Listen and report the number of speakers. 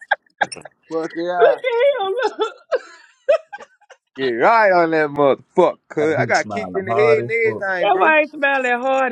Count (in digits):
2